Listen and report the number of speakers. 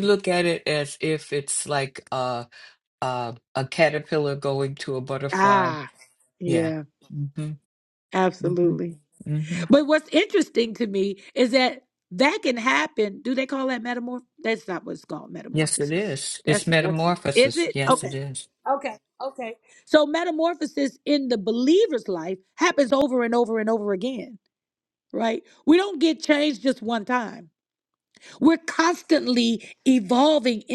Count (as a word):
two